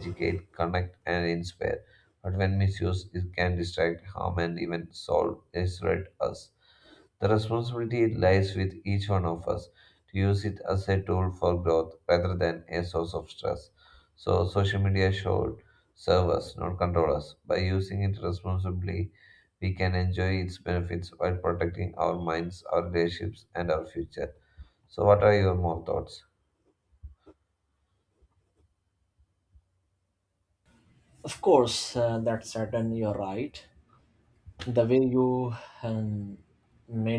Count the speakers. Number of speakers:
2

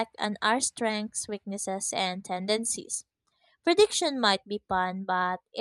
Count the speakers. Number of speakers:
1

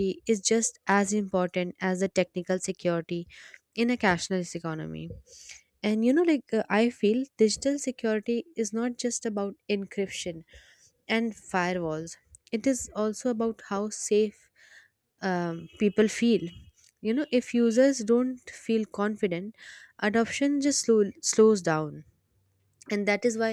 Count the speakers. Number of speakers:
1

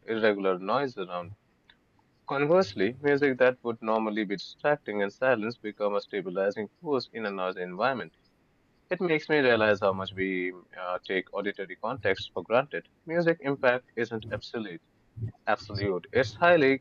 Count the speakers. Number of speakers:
1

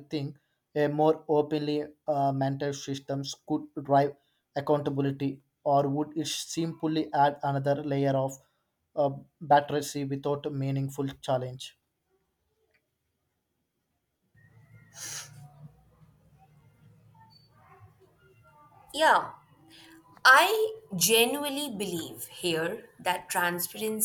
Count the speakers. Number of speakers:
2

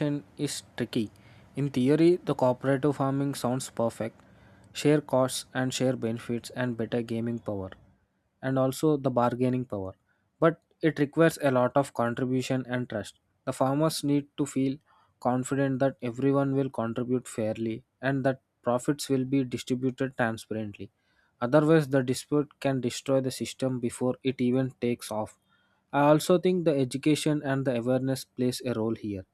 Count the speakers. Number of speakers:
1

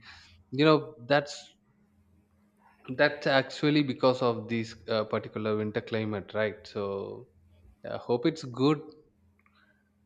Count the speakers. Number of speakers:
1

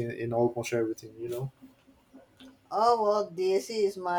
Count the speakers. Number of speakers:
2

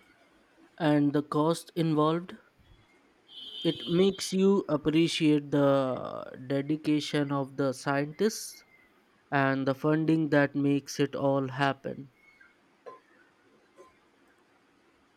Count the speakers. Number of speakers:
1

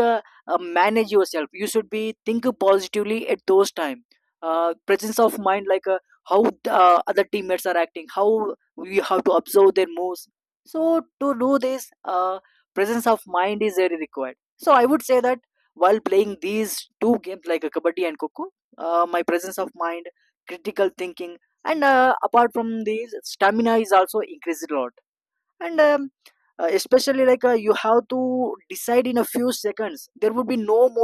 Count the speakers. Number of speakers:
1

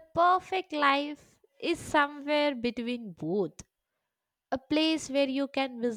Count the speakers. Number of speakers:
1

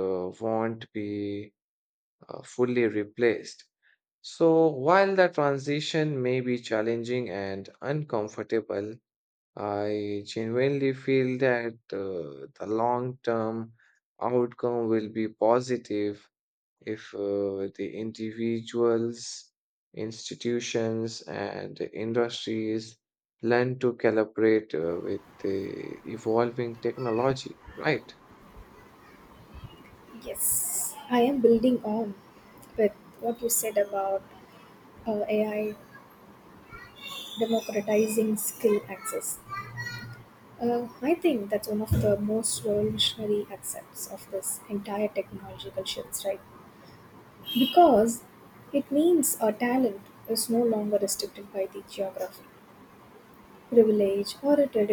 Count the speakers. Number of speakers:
2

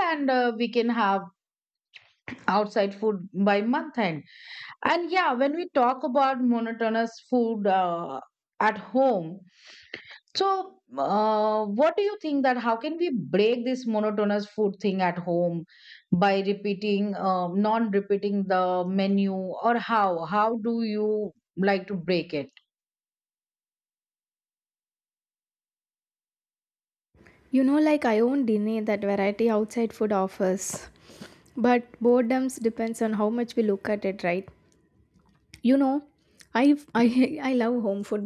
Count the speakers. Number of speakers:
2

